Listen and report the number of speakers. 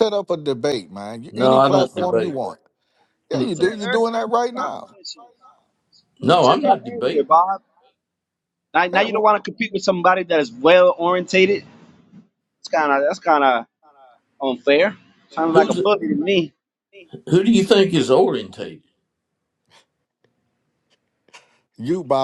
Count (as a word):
three